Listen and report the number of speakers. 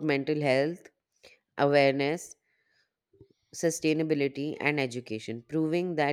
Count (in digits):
1